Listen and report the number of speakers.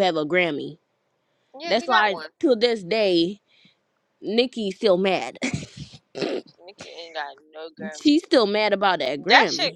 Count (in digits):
2